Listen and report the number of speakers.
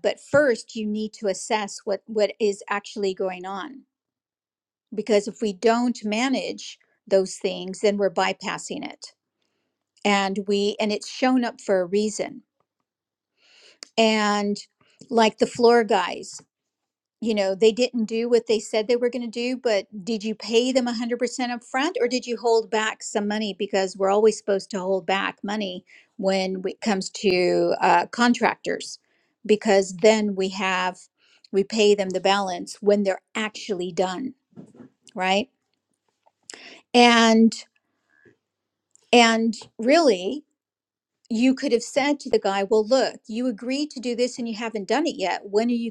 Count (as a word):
one